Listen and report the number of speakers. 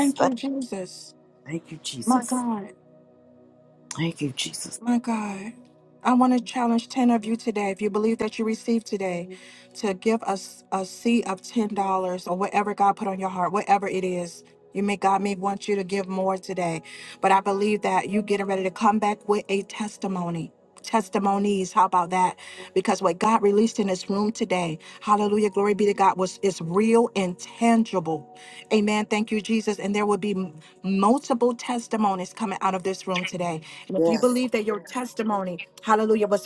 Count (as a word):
two